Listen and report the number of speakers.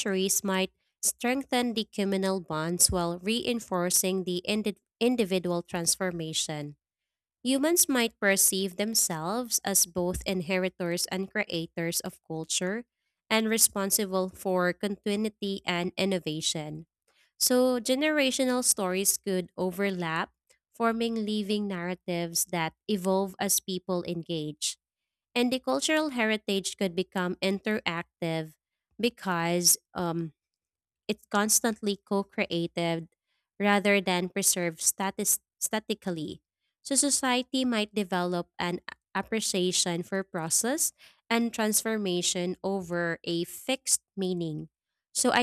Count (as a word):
one